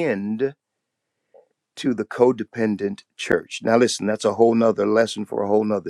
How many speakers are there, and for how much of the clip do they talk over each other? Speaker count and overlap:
1, no overlap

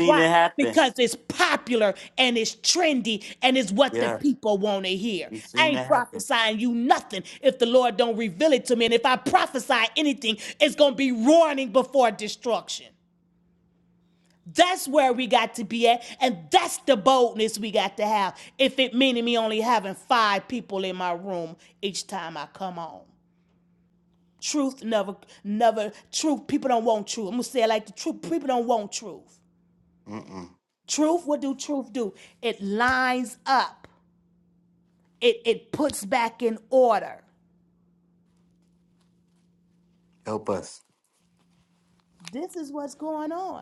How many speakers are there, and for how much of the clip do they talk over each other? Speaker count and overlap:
2, about 4%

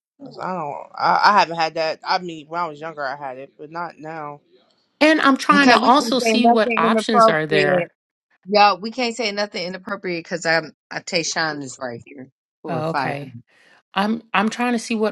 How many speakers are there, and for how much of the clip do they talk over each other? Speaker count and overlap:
3, about 19%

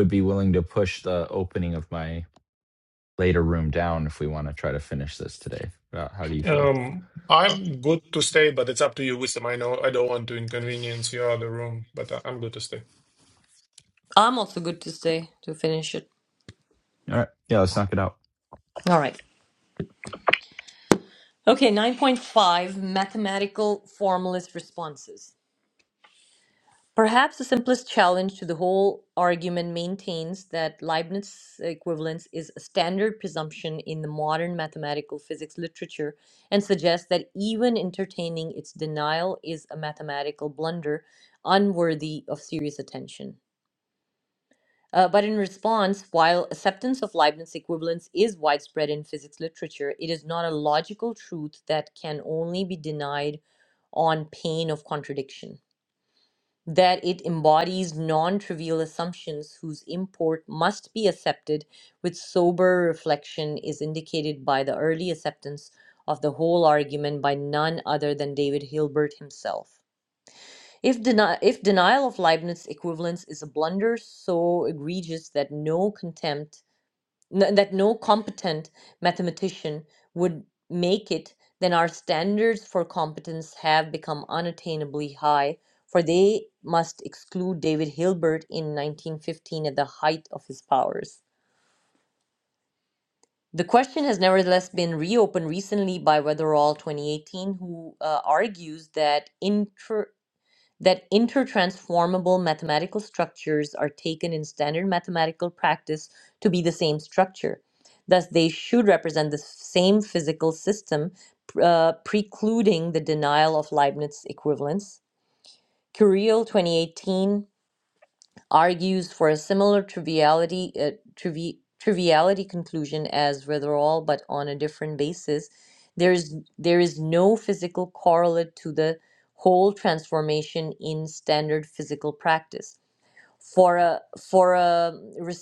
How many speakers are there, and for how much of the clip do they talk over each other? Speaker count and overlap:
3, under 1%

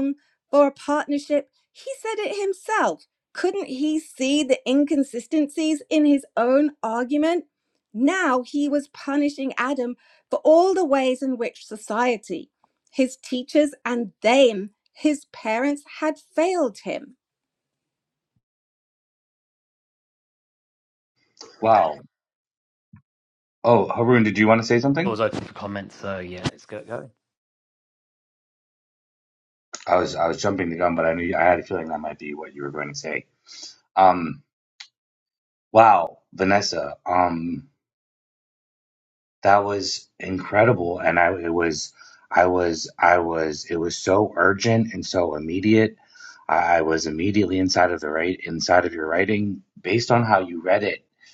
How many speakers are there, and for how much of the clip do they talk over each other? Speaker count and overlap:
3, under 1%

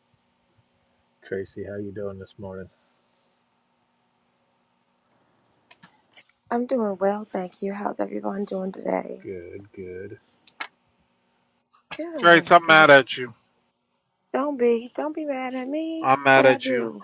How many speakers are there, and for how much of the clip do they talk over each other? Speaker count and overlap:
3, about 9%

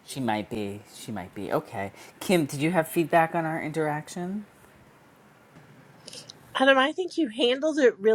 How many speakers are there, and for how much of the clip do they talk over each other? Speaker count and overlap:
2, no overlap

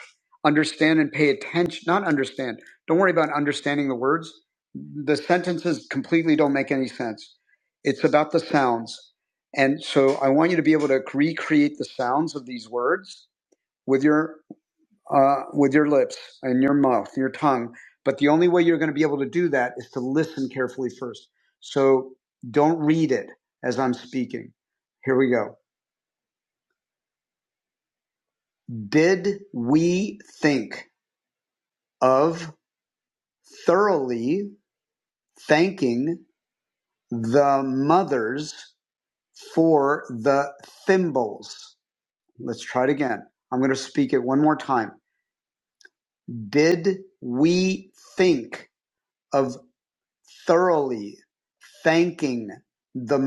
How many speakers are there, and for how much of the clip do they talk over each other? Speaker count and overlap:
1, no overlap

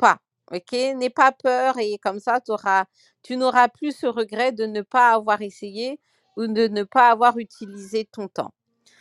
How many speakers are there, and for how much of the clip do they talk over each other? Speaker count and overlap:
1, no overlap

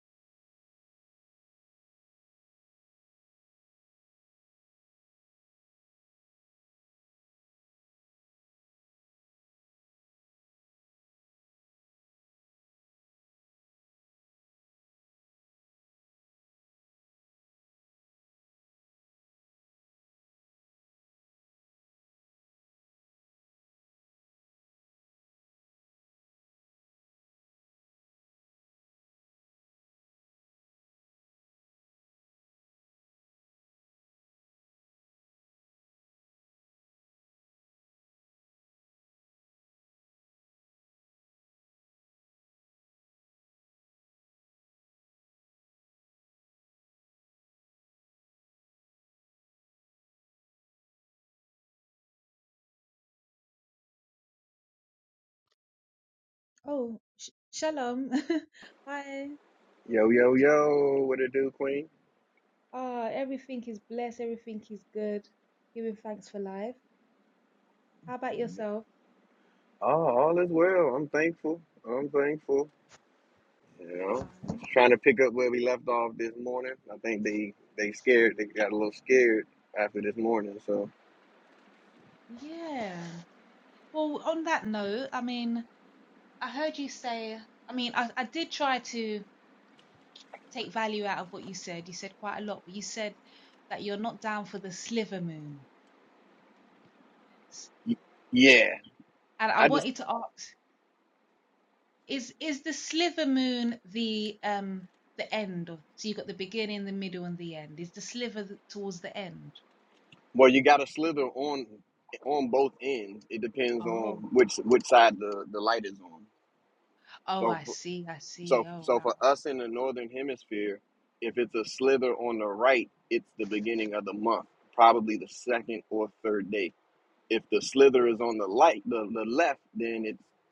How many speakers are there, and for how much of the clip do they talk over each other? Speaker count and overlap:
2, about 1%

